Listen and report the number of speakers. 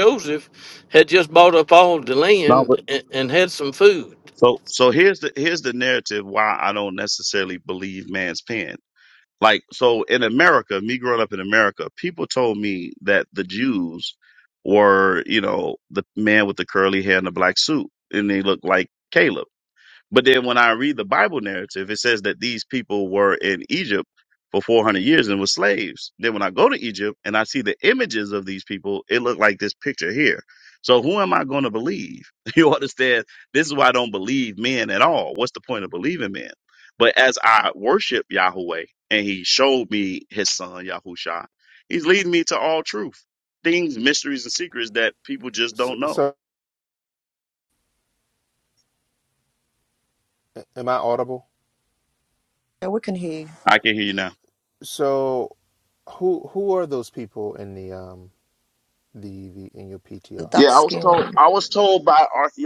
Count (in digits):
4